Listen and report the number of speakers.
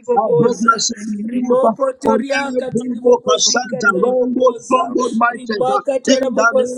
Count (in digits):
2